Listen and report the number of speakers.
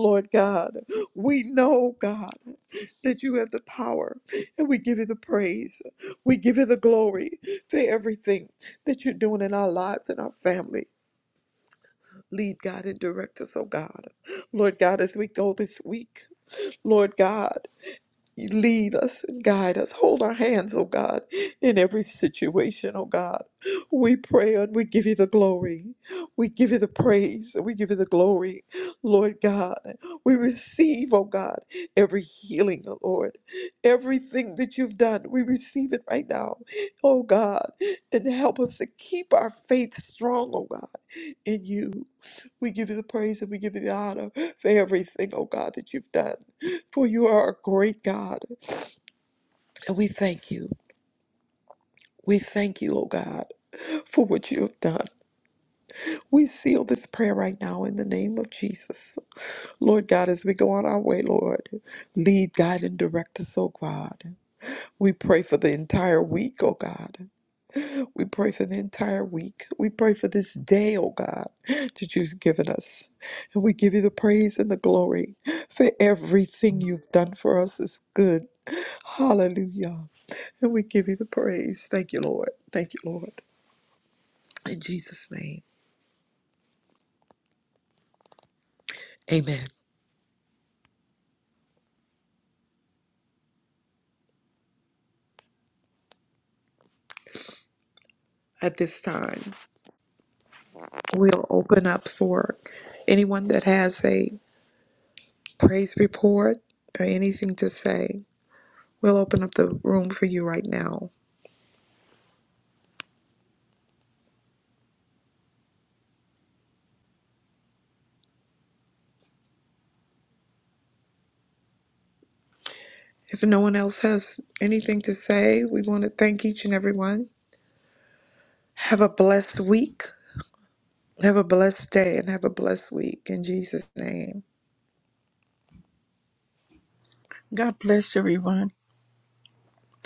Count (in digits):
2